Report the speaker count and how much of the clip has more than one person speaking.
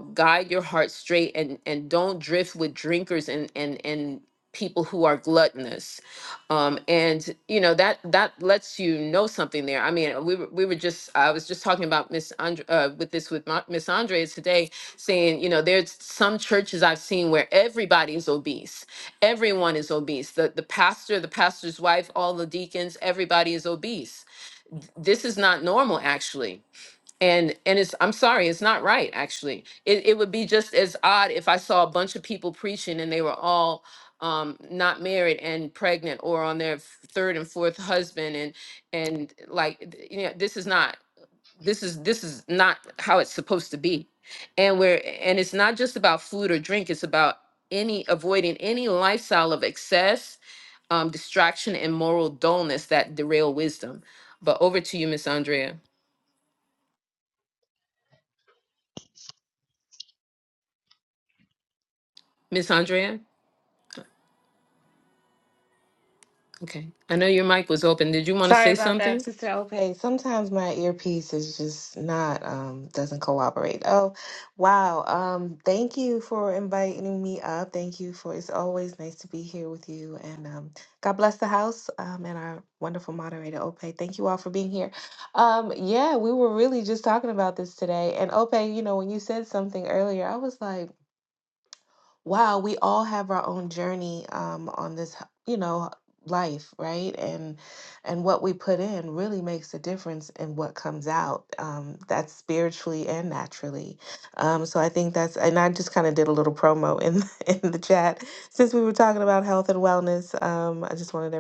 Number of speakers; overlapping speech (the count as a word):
two, about 1%